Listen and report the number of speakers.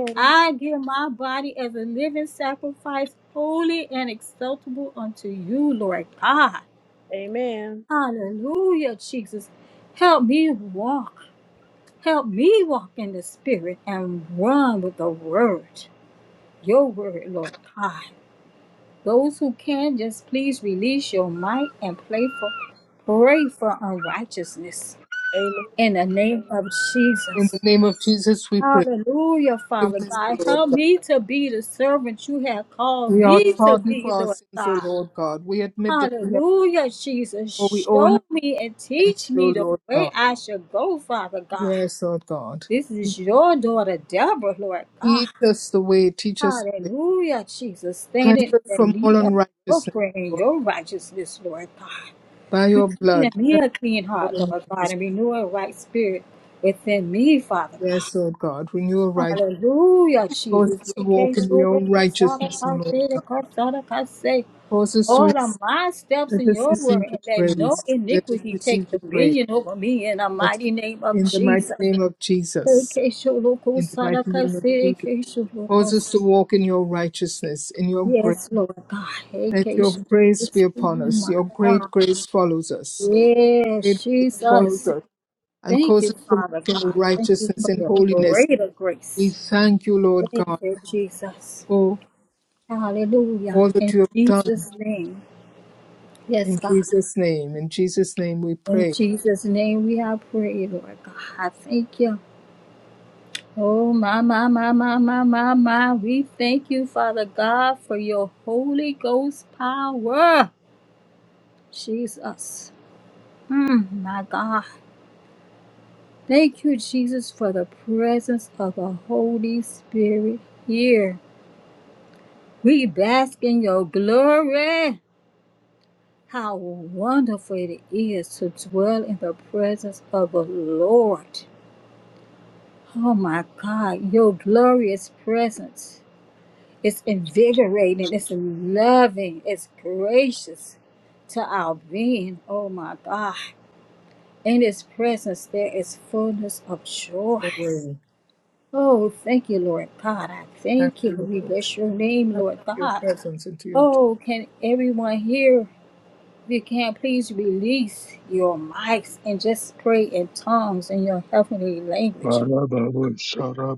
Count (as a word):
four